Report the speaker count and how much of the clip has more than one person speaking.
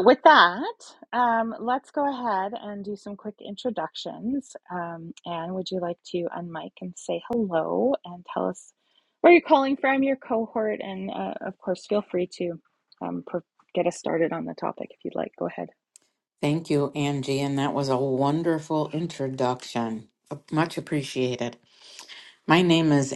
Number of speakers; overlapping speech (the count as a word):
two, no overlap